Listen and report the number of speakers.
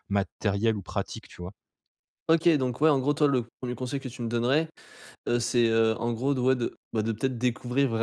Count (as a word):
two